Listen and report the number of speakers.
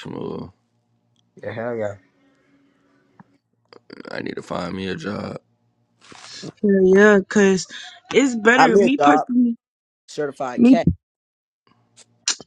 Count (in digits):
3